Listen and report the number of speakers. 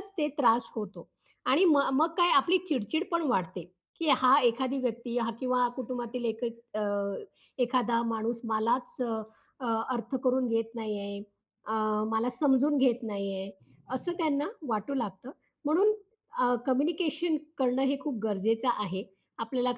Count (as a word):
one